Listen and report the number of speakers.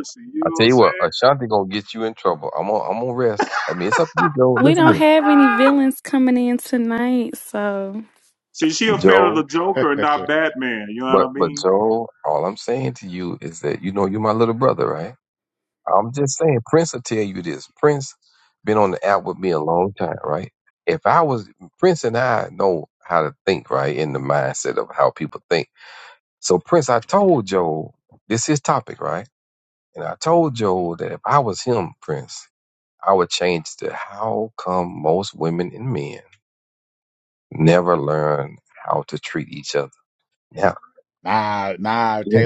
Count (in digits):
4